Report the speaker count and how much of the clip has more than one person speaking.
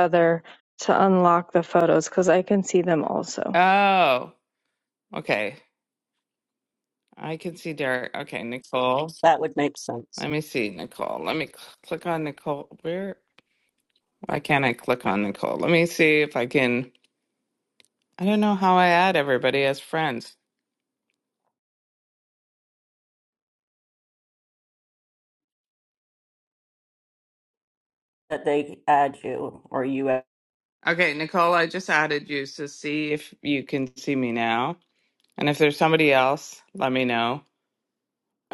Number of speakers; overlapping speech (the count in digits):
3, under 1%